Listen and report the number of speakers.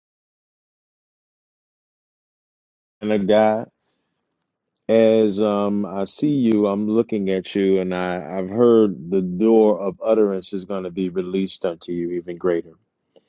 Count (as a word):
one